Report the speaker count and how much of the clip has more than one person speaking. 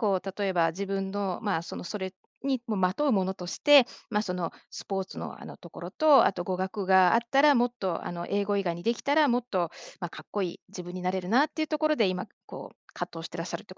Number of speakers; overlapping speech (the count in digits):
1, no overlap